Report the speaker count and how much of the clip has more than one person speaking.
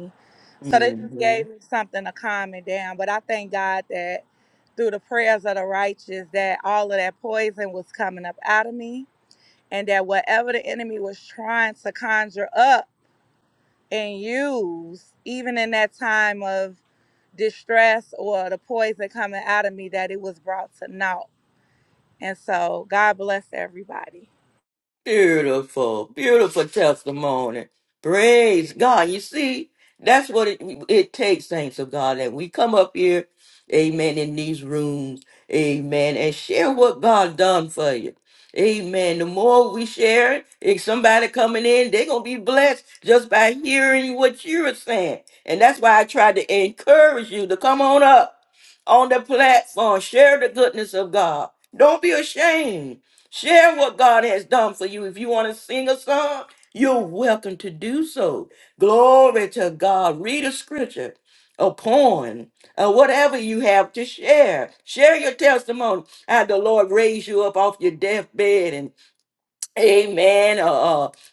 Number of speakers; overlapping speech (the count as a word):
two, about 1%